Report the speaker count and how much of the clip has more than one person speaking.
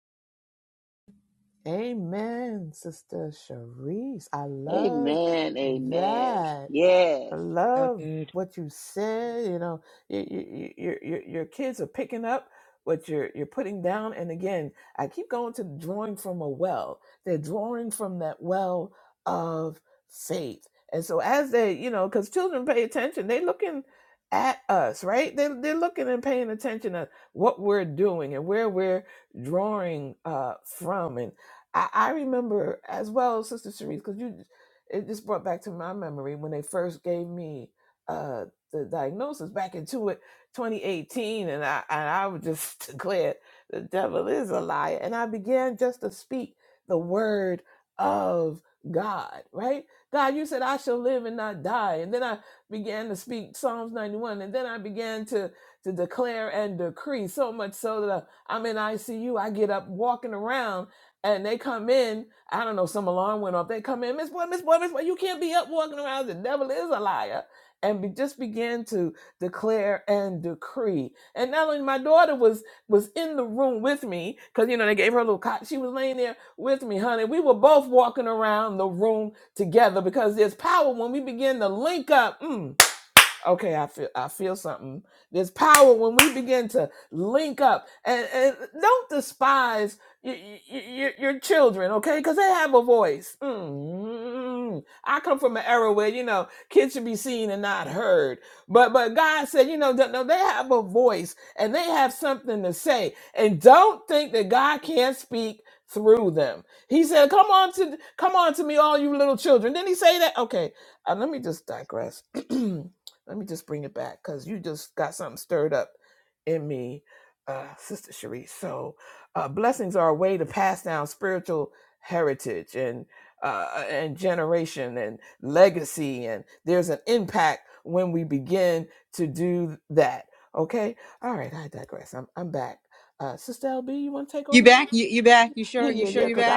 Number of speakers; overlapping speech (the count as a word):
three, about 2%